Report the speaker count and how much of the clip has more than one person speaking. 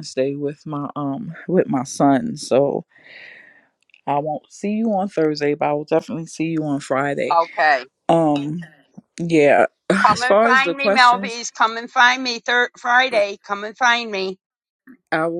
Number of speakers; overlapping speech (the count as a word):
two, about 8%